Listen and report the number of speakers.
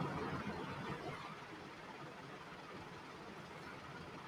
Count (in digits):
0